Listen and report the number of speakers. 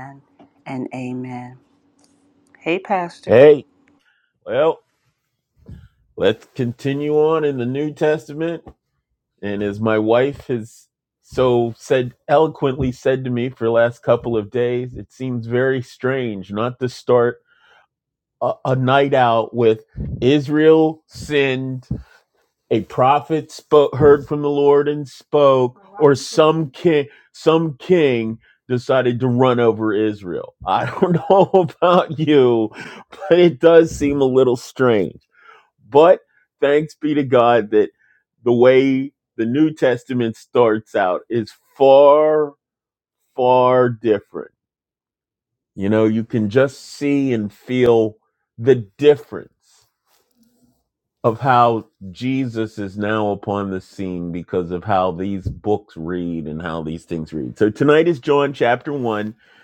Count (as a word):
two